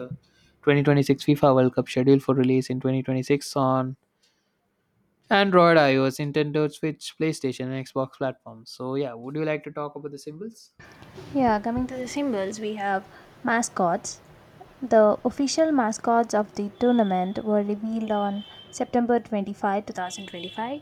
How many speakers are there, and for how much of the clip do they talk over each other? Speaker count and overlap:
two, no overlap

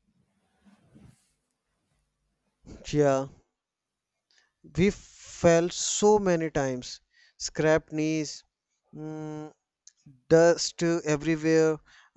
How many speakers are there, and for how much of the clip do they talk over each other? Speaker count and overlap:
one, no overlap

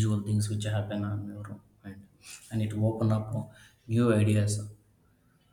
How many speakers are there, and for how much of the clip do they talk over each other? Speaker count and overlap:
one, no overlap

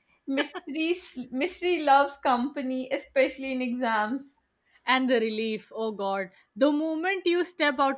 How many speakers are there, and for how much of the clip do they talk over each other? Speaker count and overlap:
two, no overlap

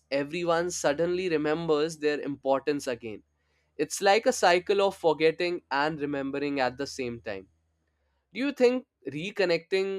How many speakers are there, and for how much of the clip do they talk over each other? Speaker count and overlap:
one, no overlap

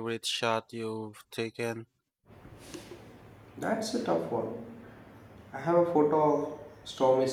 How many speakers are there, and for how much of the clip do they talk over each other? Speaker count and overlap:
two, no overlap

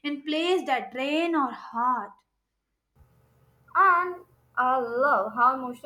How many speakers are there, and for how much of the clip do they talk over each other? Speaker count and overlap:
two, no overlap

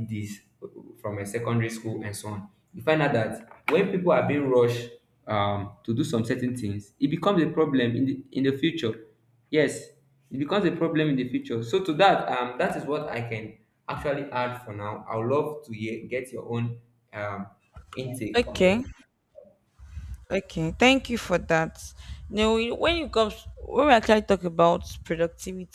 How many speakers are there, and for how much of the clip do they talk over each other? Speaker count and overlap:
two, about 2%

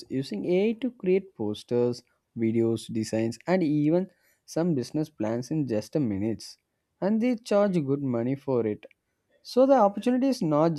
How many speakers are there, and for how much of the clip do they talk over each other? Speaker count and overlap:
one, no overlap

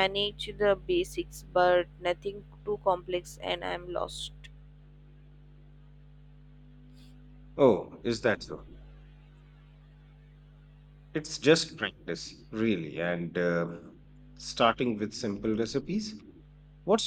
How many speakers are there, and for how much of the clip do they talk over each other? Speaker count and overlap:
two, no overlap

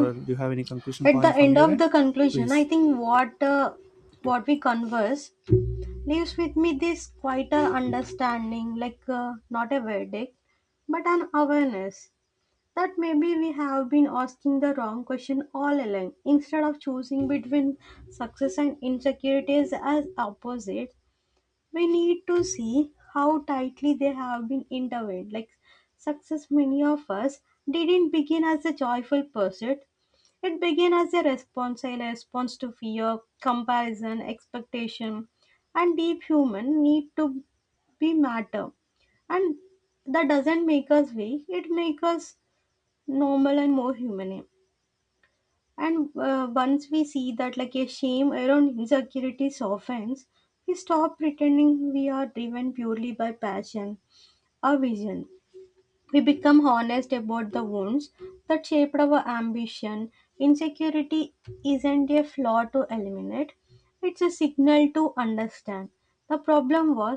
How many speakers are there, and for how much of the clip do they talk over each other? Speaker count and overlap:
two, about 2%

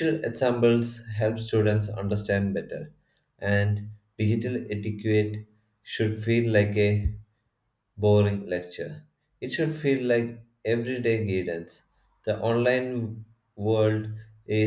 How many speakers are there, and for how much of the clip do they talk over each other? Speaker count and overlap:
one, no overlap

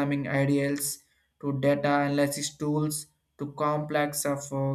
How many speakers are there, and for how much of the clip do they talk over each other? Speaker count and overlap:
one, no overlap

